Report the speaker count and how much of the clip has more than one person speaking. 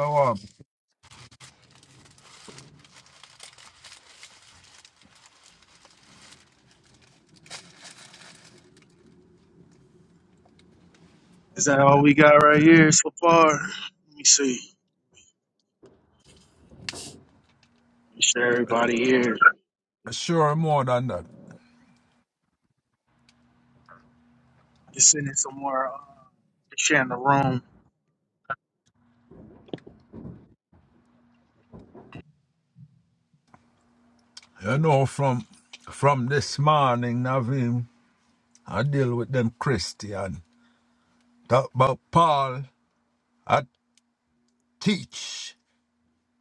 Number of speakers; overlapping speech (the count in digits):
2, no overlap